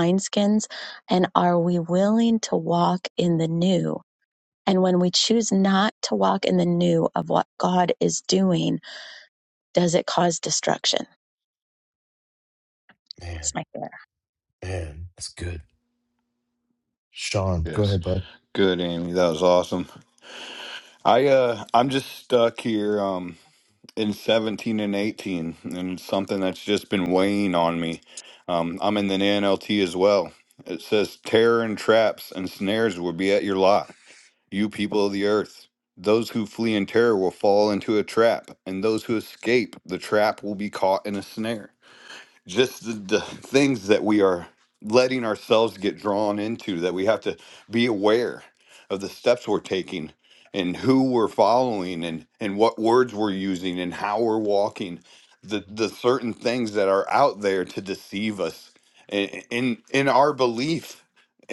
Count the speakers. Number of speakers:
3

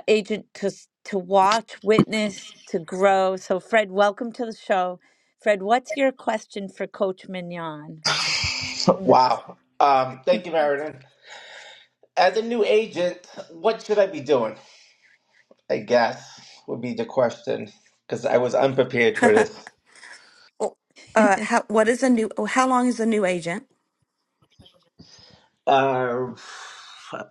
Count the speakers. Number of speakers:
3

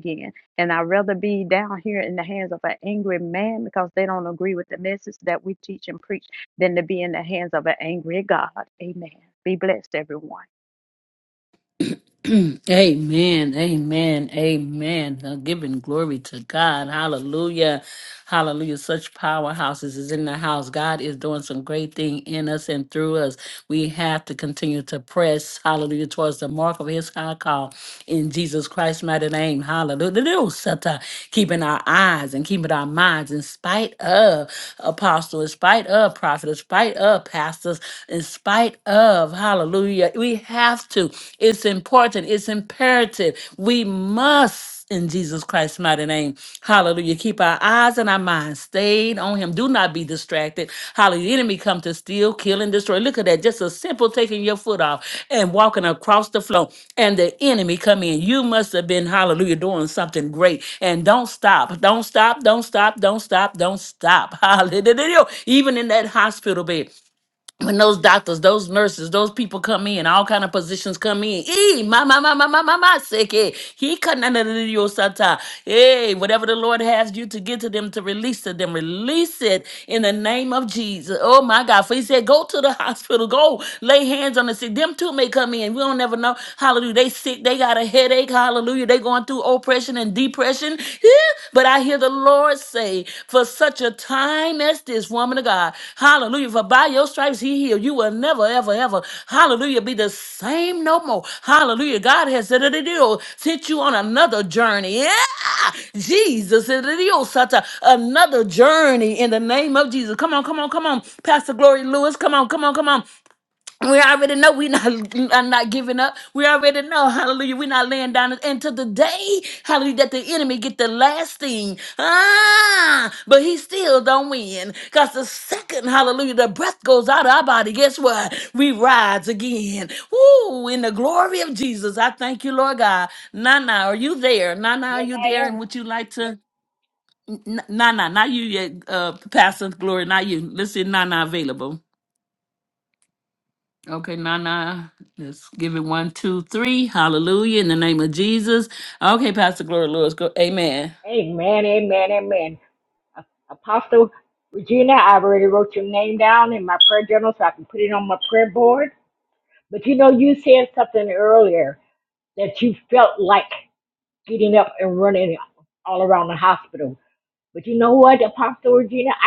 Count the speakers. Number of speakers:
3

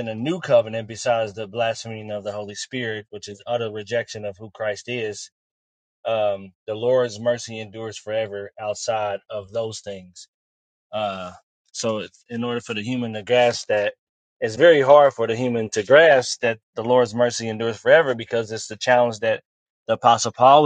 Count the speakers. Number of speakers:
1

